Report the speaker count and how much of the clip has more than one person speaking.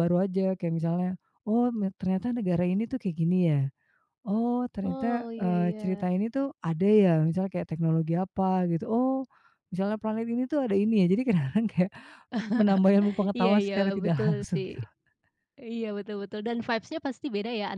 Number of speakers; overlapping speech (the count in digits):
2, about 15%